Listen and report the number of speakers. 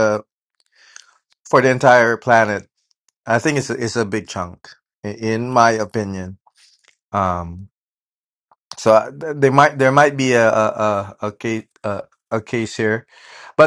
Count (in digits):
1